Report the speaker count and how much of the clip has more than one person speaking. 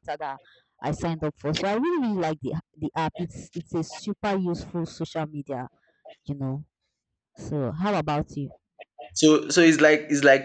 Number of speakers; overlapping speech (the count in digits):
2, no overlap